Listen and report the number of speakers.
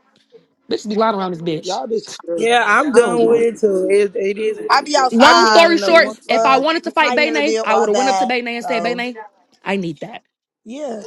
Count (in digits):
3